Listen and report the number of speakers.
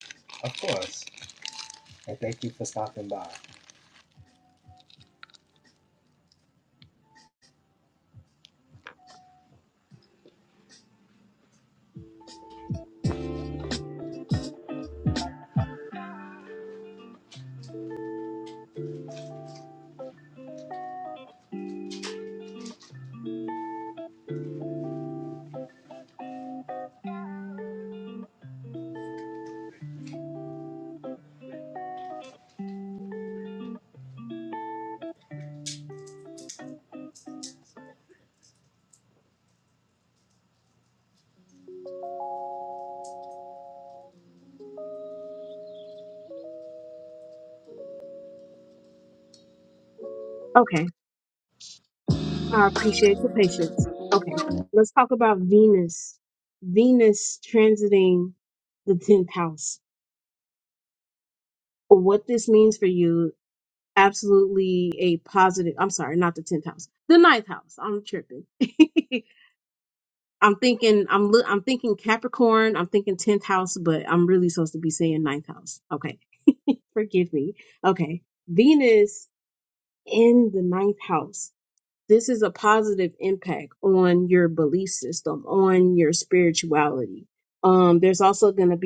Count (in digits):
2